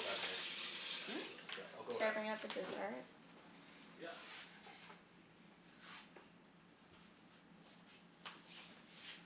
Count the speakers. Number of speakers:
2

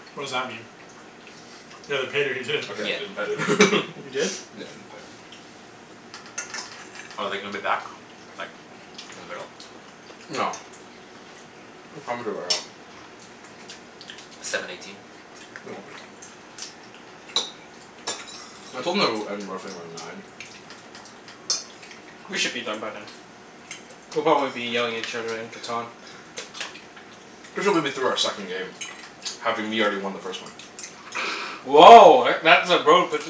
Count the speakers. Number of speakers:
4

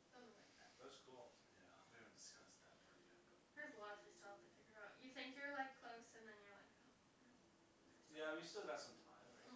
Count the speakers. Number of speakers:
3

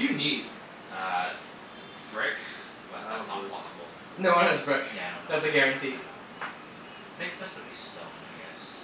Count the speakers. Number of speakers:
3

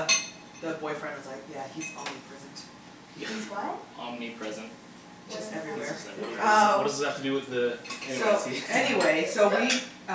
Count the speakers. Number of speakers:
4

